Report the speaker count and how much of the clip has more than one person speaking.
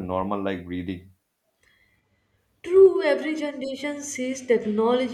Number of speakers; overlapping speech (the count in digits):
2, no overlap